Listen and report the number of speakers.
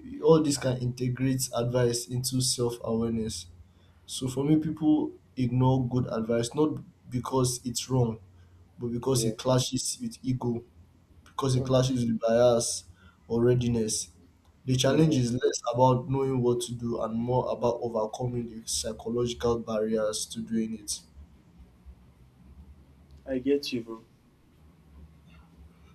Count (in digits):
2